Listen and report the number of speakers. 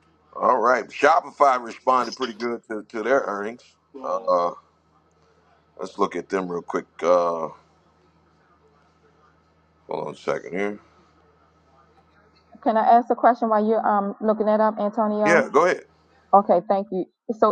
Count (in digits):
2